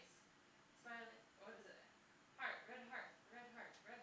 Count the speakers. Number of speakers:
one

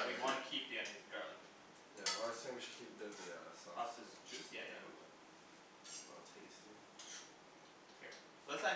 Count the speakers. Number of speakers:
two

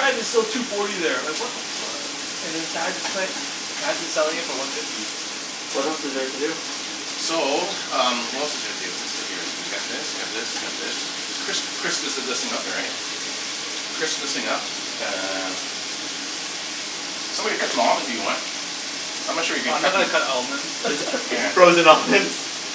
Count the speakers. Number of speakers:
three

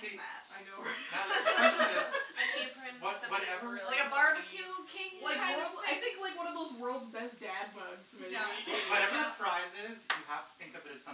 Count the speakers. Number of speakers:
four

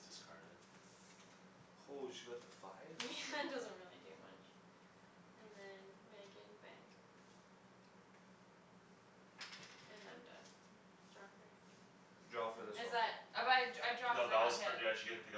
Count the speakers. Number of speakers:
four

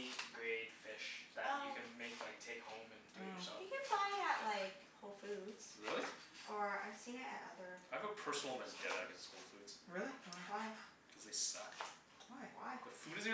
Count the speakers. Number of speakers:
four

